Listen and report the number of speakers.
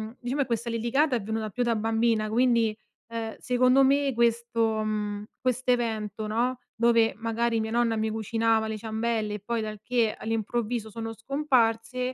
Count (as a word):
one